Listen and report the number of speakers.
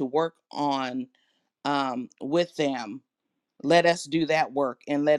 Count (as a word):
one